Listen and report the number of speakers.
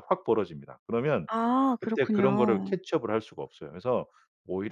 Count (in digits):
2